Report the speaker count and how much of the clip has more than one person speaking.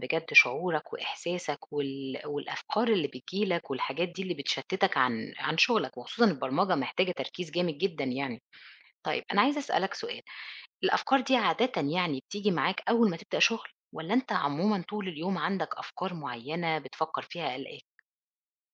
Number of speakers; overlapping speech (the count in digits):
1, no overlap